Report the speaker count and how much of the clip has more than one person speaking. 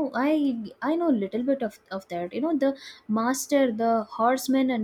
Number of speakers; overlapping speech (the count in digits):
1, no overlap